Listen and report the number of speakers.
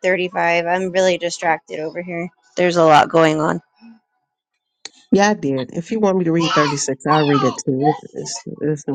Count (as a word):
two